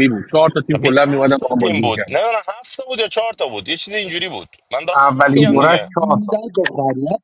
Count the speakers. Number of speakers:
3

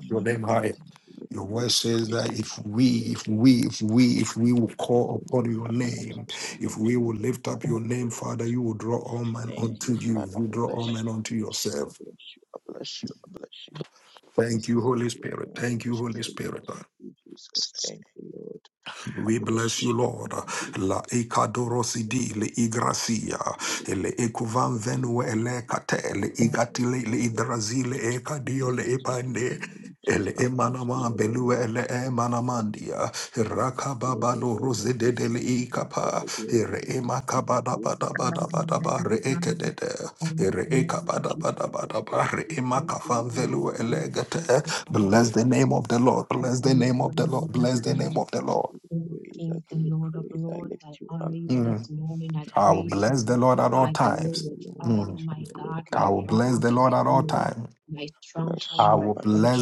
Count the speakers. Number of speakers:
3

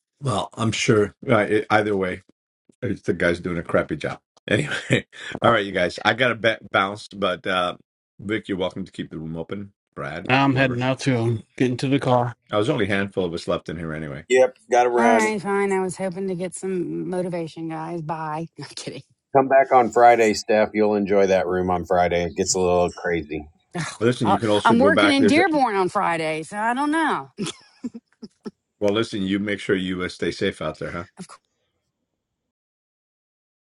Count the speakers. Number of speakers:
4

